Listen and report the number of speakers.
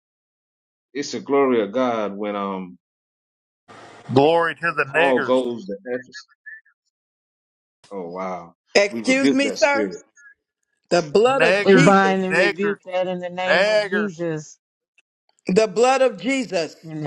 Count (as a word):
four